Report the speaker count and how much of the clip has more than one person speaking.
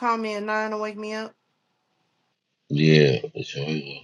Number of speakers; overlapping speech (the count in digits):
2, no overlap